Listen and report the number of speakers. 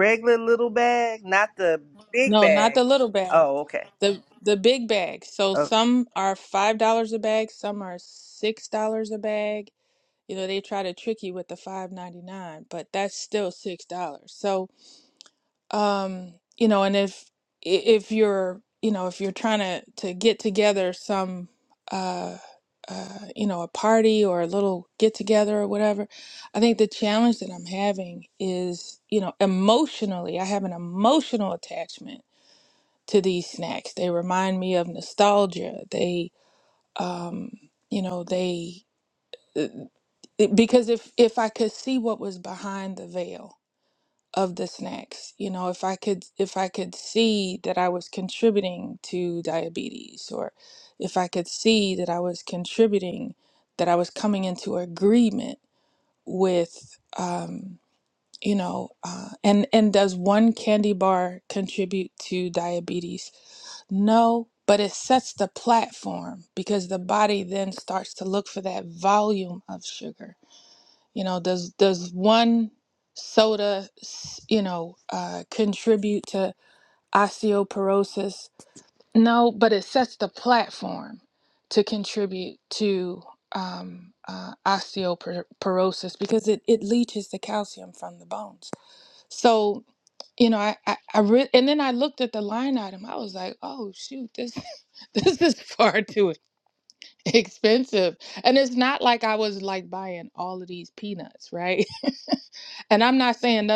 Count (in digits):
2